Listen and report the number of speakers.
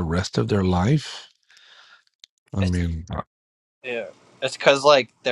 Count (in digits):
2